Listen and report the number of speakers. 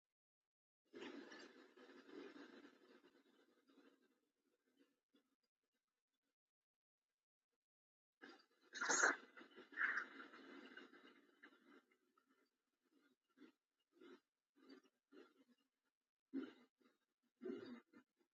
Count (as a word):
zero